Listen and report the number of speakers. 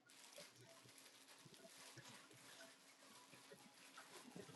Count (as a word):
zero